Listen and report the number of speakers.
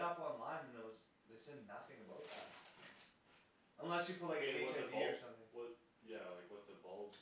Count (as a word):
two